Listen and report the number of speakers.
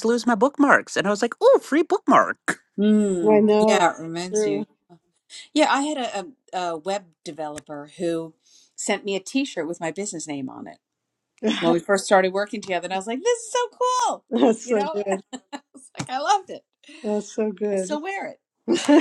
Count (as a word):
three